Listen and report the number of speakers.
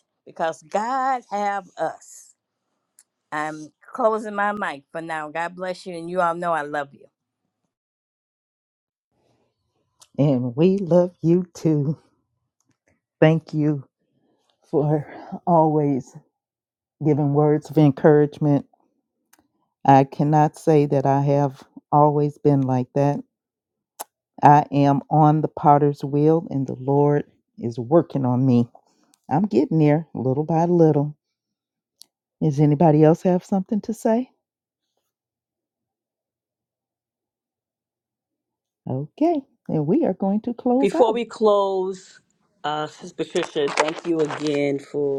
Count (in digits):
3